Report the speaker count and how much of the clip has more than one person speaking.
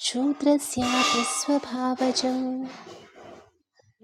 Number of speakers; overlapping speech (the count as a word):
one, no overlap